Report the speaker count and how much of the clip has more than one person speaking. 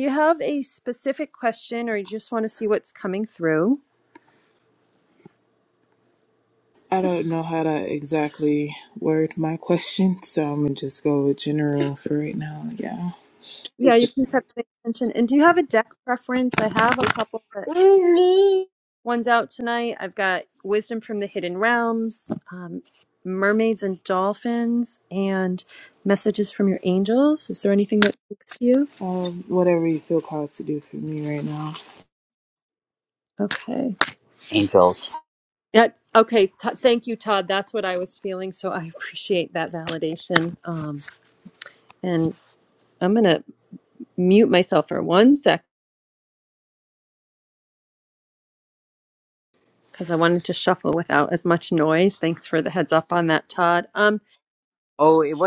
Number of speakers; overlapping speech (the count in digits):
3, no overlap